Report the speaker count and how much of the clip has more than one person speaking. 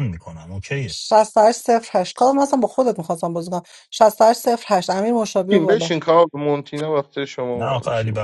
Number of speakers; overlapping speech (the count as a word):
three, about 13%